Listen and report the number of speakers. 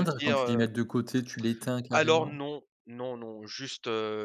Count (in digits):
2